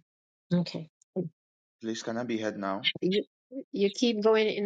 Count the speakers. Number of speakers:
2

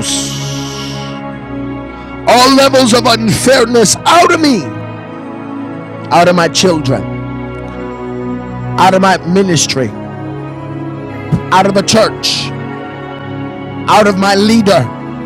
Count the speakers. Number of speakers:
1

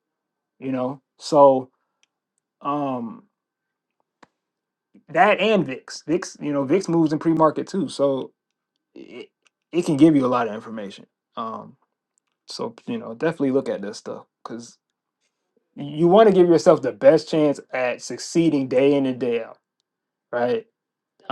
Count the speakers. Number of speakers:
1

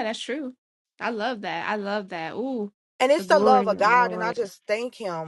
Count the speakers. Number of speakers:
2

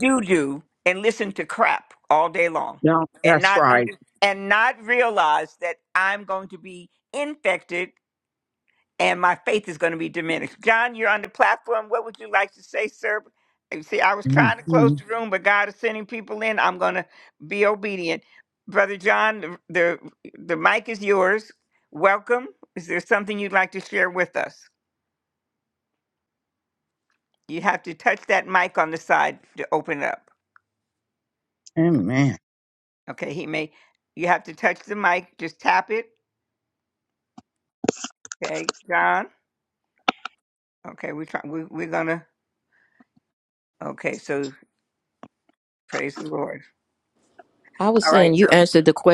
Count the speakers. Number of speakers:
3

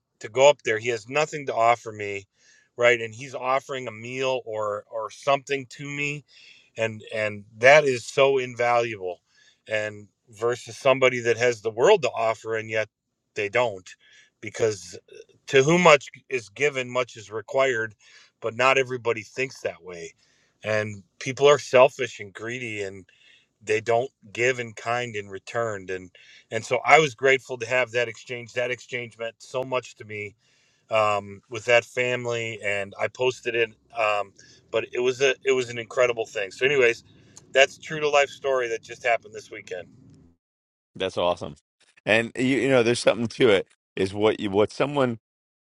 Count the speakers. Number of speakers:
2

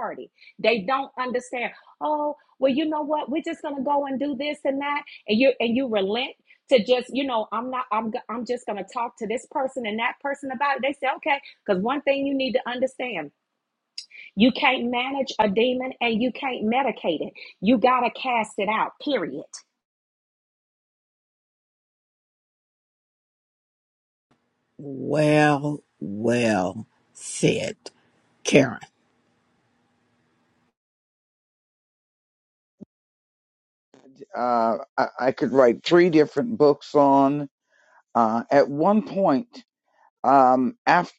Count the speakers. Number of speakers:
3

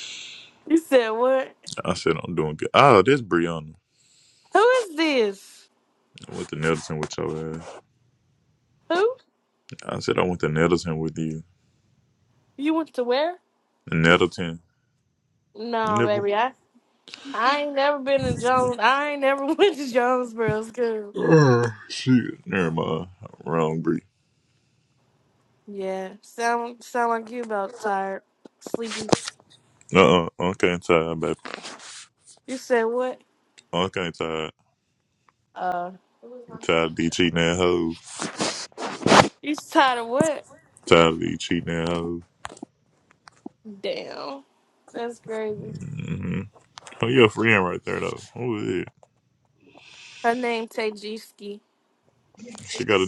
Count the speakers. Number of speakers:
2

